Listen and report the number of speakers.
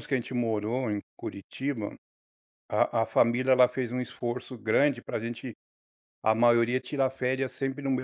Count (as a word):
one